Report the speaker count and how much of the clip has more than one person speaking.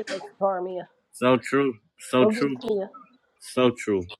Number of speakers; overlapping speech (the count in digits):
2, about 9%